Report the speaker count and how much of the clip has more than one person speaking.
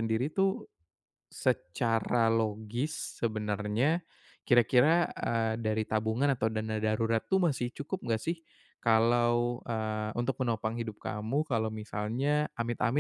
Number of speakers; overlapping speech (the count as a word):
one, no overlap